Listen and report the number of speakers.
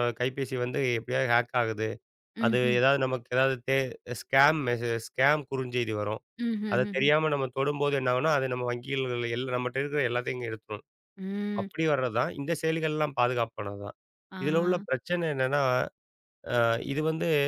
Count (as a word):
two